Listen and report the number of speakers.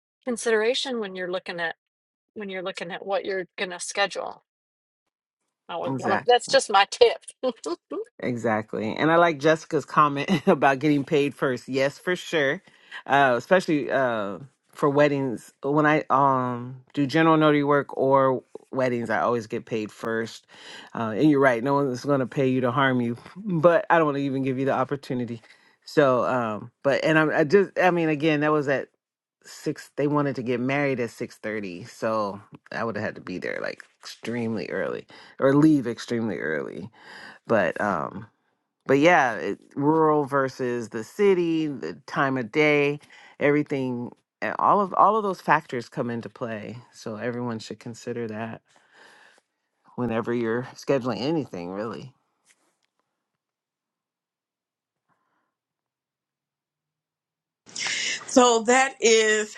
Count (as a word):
three